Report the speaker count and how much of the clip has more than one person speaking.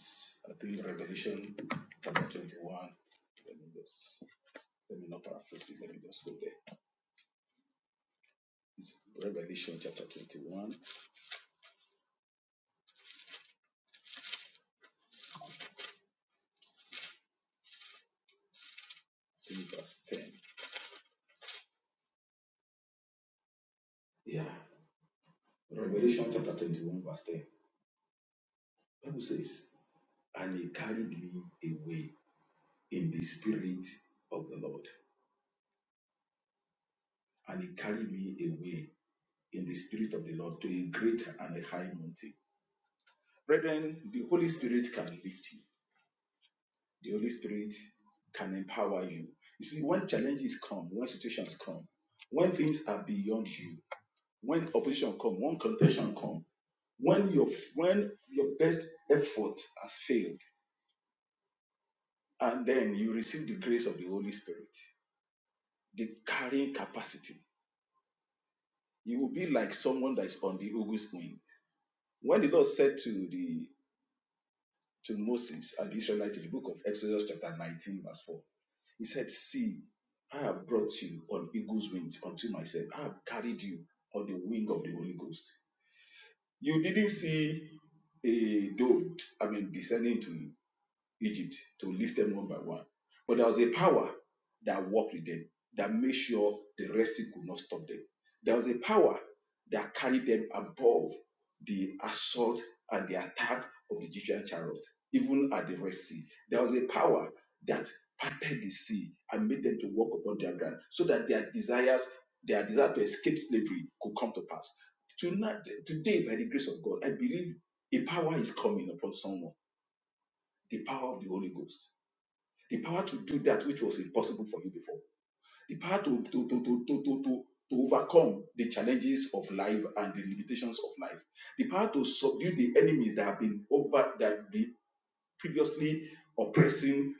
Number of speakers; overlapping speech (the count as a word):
one, no overlap